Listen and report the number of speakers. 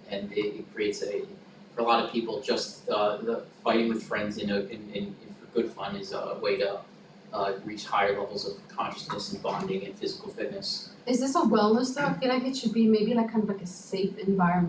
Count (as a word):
two